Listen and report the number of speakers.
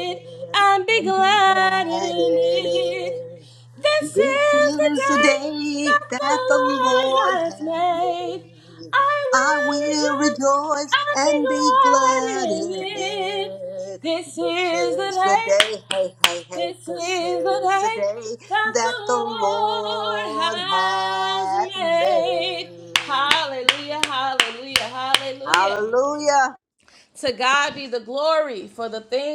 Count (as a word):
two